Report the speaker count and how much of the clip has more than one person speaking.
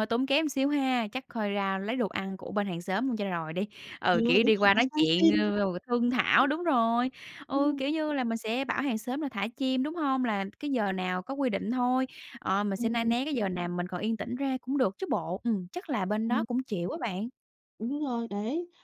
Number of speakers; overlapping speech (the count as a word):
two, about 13%